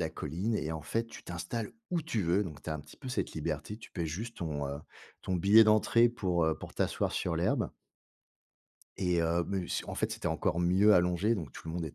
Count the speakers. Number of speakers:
one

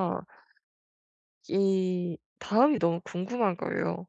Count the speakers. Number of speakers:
one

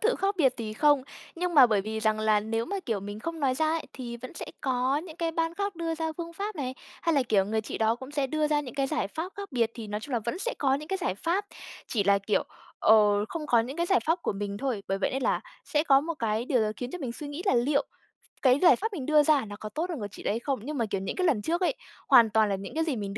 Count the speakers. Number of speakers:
one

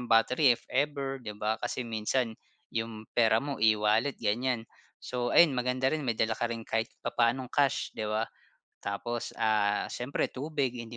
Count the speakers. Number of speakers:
one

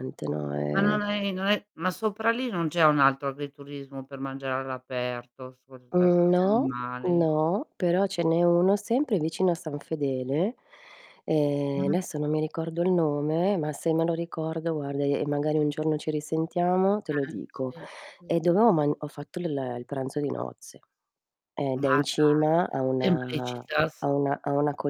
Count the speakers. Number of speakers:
two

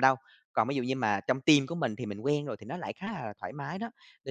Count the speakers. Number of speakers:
one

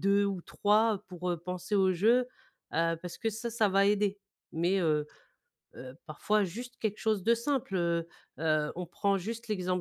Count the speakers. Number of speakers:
one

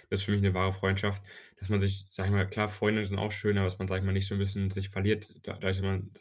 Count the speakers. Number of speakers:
one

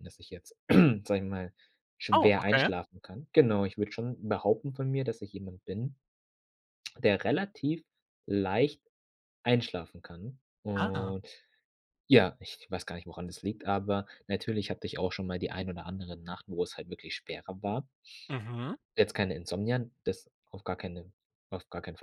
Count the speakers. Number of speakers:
two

